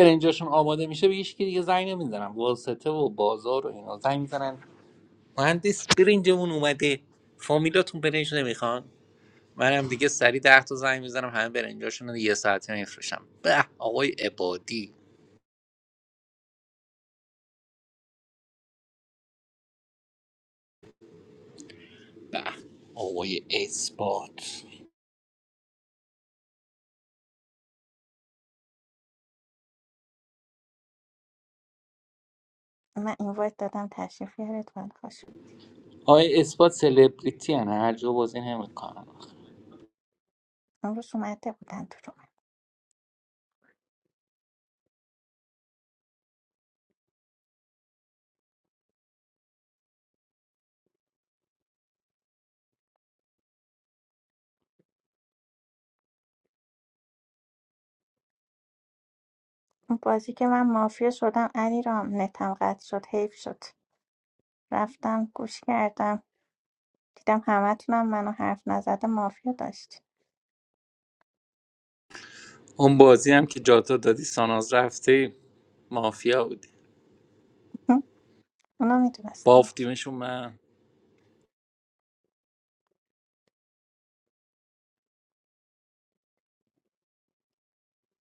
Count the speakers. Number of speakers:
2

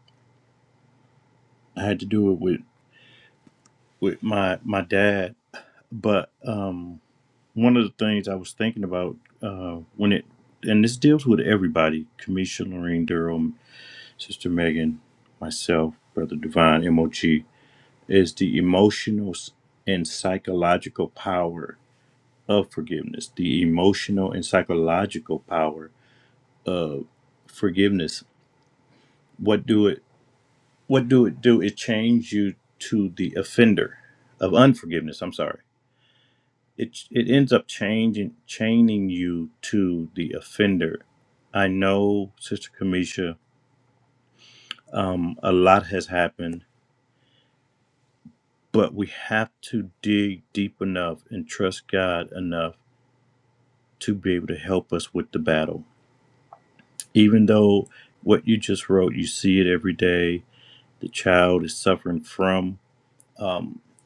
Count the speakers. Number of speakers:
1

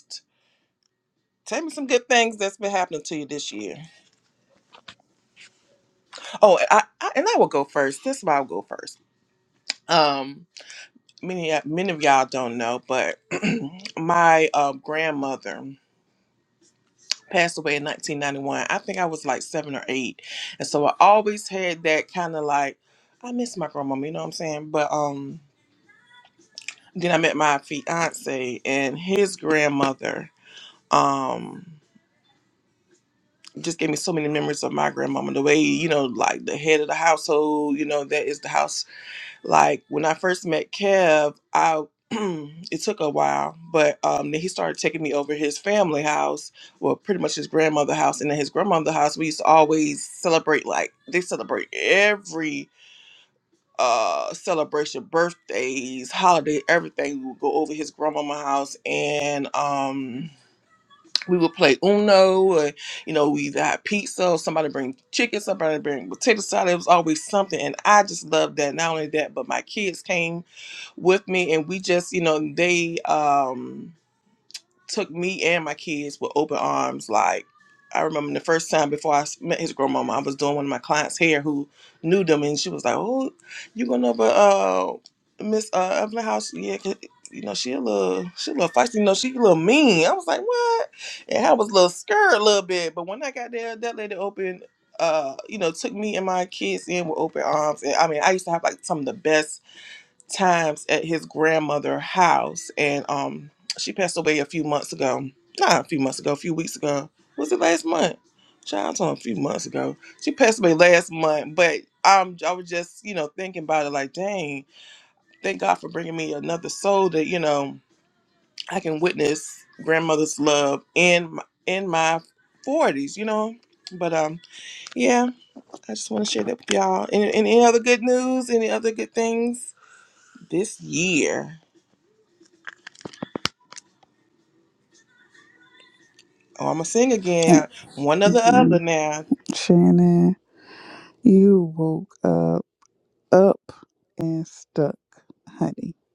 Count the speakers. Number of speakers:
2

